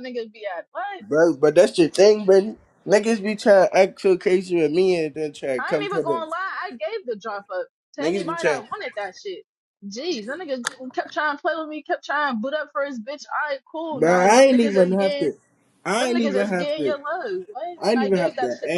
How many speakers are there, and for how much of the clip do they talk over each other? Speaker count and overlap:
2, about 24%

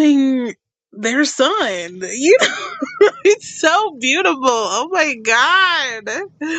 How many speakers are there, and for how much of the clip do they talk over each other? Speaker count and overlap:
1, no overlap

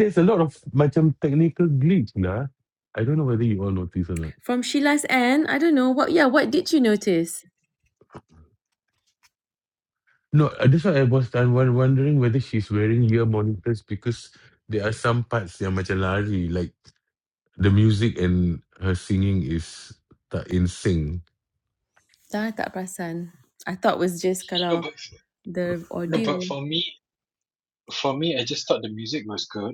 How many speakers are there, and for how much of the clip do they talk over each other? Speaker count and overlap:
3, about 2%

